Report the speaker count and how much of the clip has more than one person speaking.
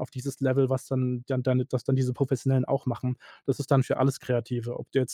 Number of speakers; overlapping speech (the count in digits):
1, no overlap